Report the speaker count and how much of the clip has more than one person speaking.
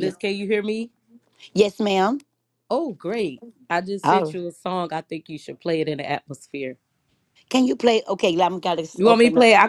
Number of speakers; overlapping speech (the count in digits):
2, about 10%